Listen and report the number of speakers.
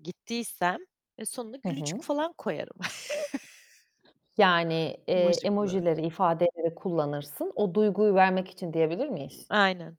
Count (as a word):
two